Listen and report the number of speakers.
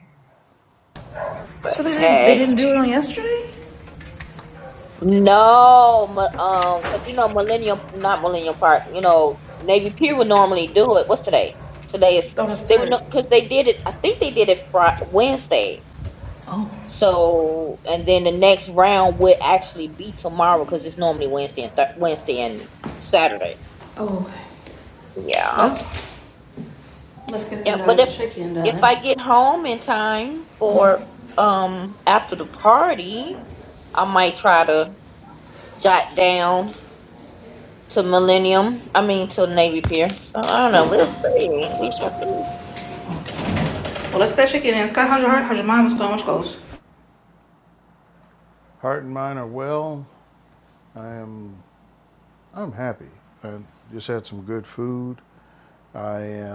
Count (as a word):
three